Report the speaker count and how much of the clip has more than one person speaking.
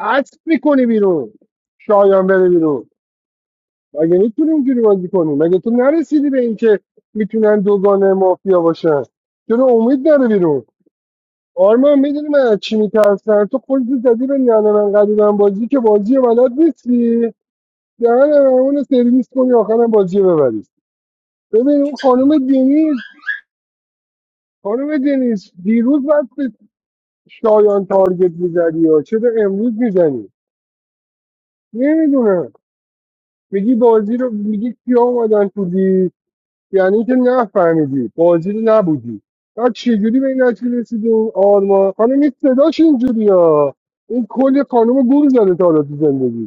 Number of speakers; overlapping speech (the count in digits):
1, no overlap